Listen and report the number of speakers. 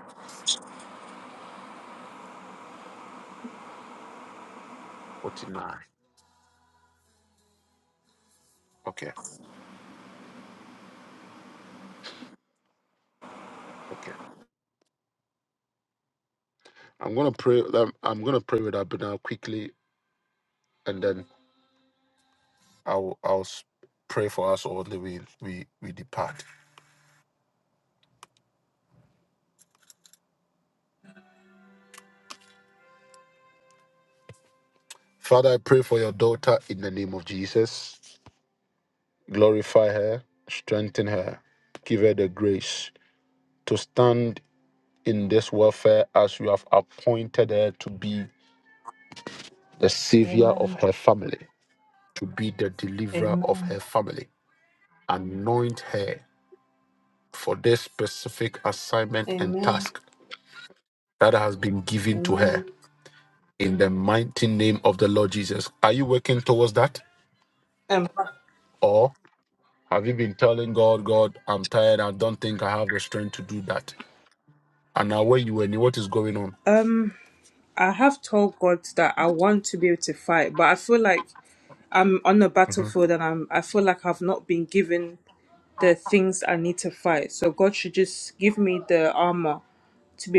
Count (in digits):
2